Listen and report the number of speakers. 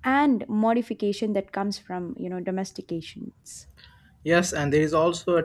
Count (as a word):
two